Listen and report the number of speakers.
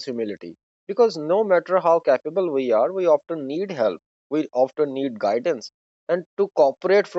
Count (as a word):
one